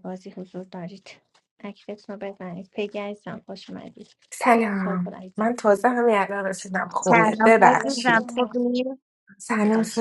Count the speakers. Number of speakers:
3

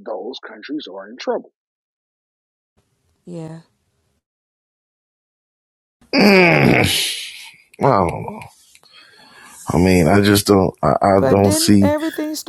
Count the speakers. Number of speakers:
3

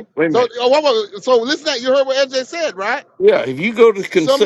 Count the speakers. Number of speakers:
2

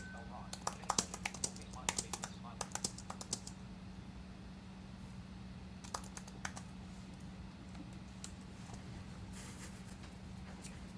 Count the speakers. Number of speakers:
0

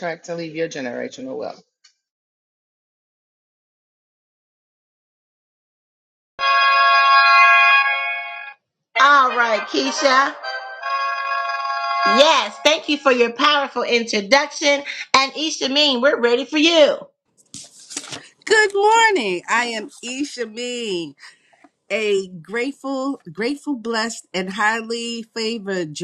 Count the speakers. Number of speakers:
3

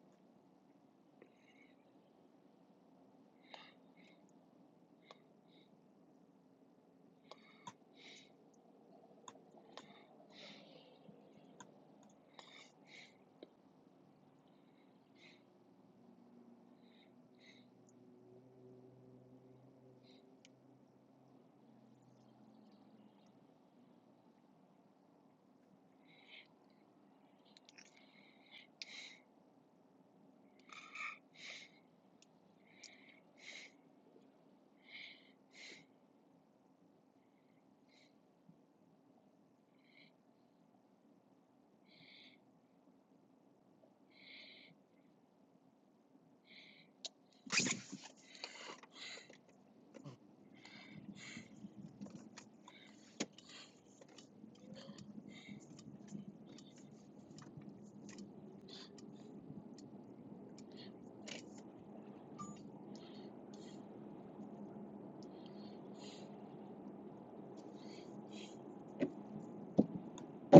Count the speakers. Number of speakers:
0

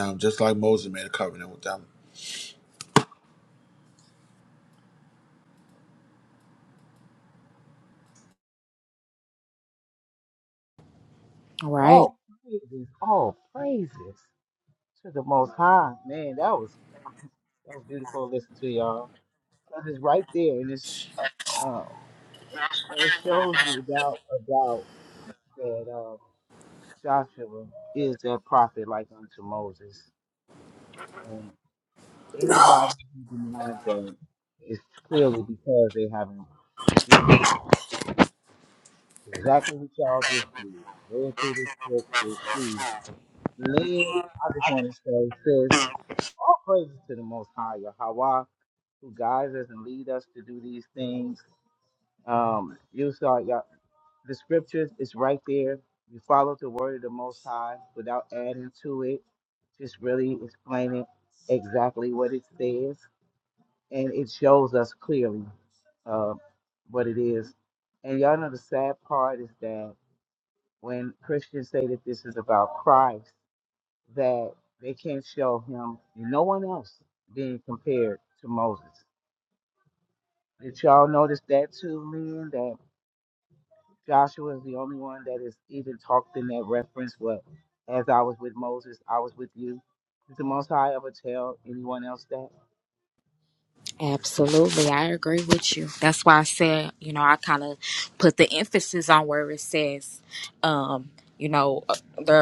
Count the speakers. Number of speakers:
3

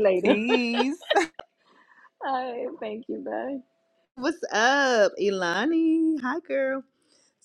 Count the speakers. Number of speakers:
2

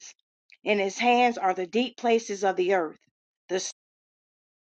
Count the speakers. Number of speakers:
1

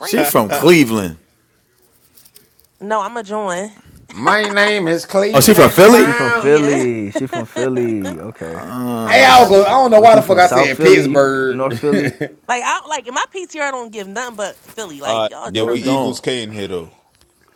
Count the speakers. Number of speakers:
5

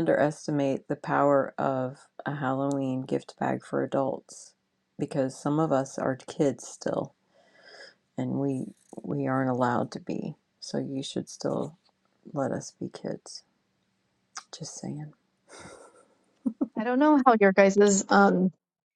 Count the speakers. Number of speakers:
2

